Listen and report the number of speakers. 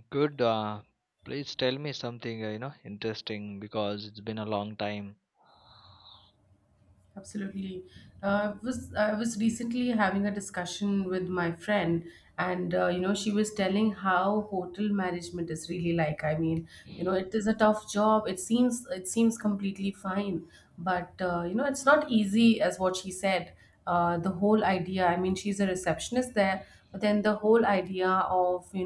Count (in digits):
2